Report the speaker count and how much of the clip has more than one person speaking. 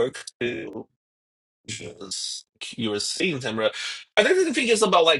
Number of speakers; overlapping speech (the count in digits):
1, no overlap